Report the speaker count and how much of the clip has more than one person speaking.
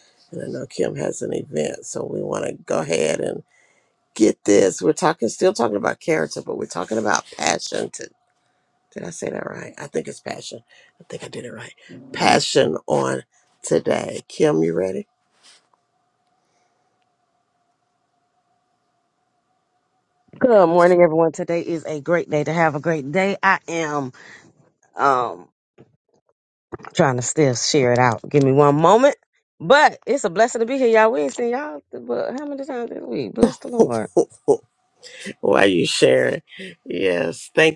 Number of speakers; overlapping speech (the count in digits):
2, no overlap